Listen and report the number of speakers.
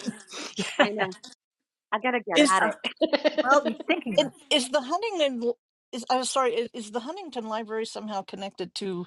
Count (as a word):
three